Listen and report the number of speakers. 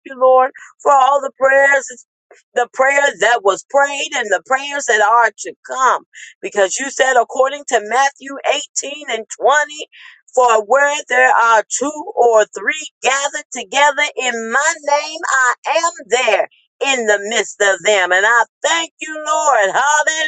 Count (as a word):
one